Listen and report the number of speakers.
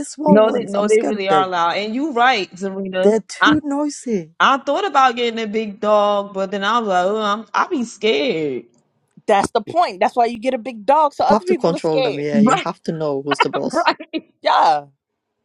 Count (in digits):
3